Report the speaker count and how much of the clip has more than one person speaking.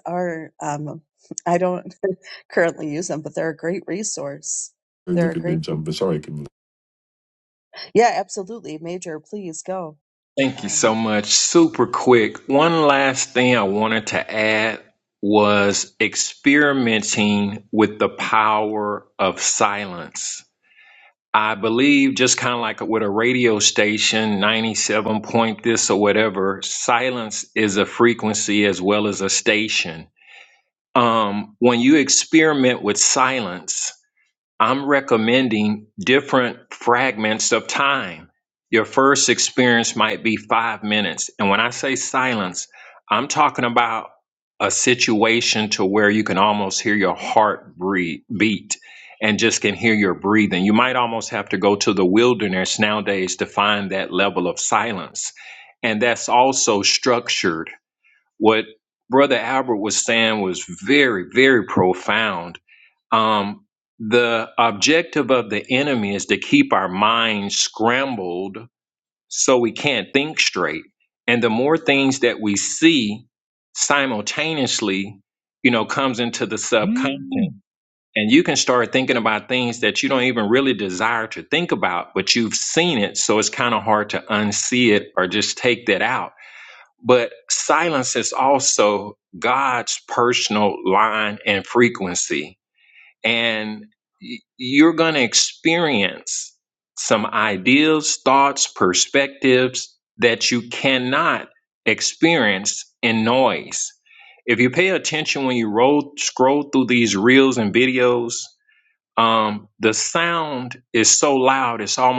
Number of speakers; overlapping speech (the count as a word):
three, about 1%